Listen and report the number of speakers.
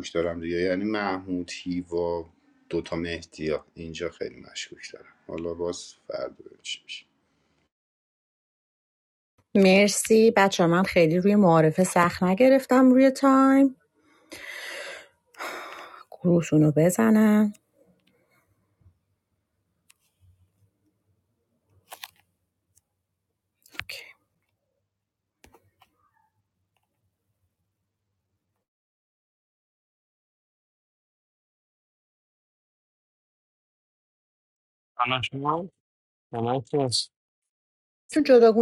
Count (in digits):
3